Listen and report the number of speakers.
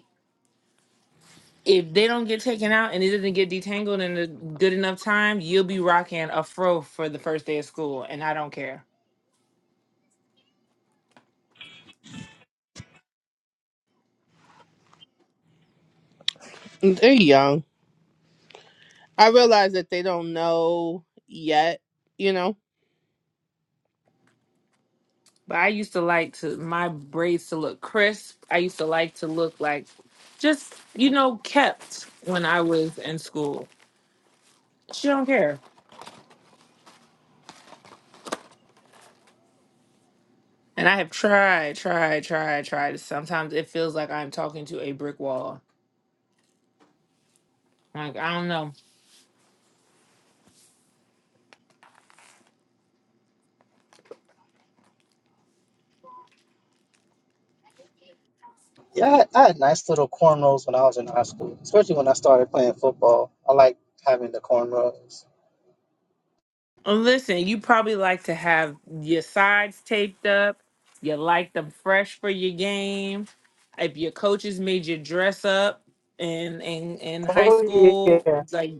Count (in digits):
3